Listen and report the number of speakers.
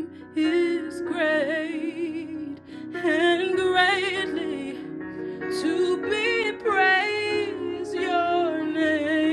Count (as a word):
one